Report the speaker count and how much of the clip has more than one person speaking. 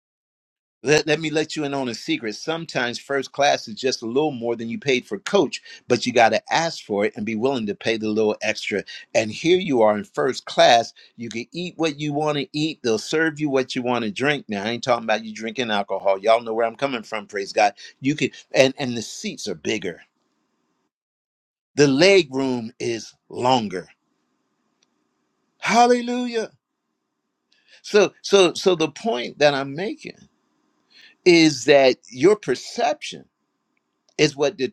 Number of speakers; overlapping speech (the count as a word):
one, no overlap